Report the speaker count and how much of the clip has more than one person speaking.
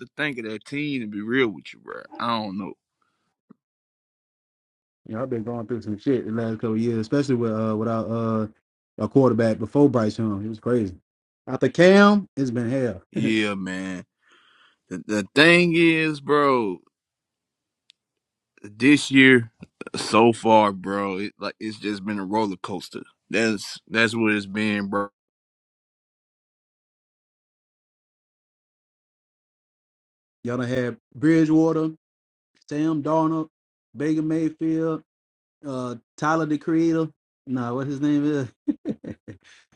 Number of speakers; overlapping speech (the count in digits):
2, no overlap